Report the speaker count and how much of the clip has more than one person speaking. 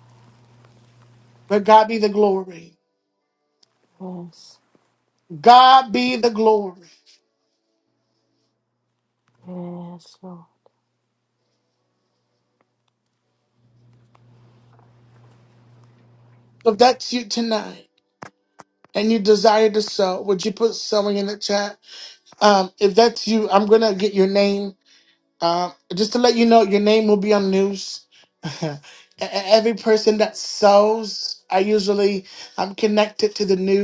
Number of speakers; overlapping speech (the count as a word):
two, no overlap